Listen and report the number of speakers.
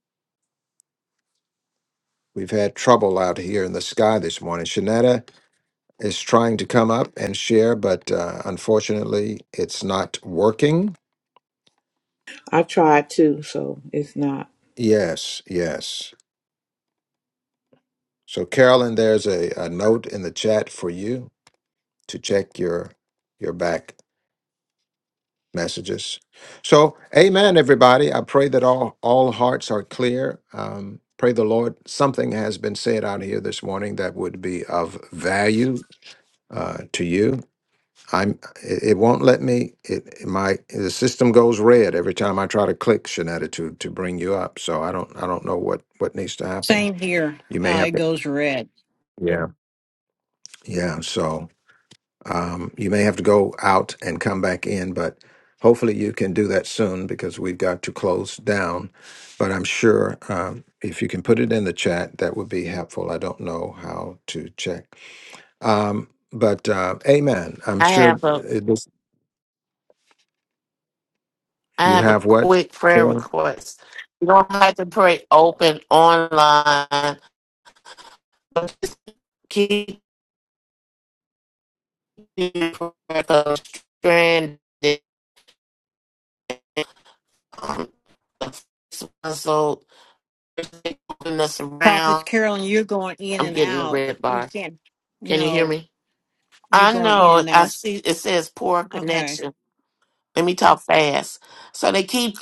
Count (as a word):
four